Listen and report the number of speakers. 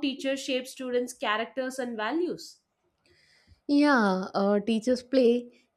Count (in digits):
2